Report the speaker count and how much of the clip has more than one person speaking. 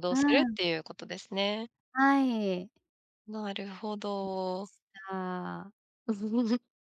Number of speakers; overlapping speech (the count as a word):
two, about 7%